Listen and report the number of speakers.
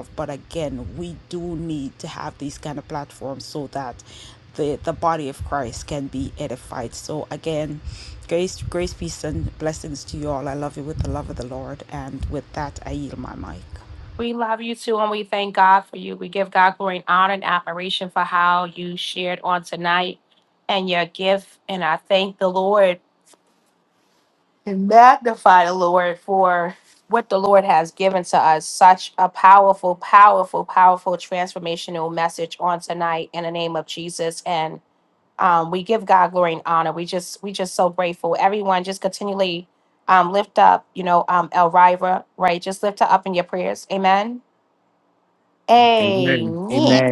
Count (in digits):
3